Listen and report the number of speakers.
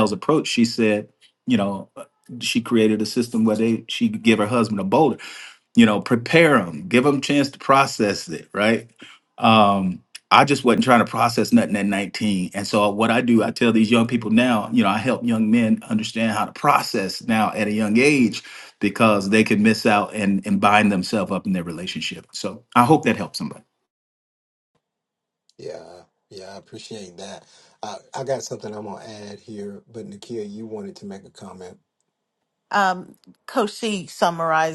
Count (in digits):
3